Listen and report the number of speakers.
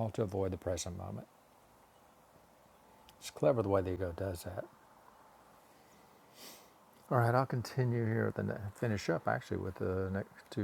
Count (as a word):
one